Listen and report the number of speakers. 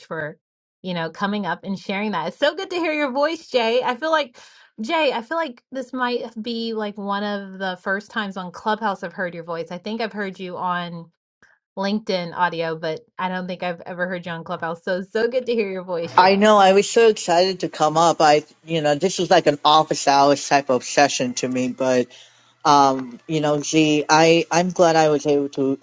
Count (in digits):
2